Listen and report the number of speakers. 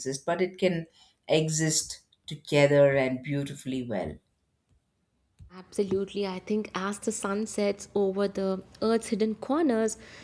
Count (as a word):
two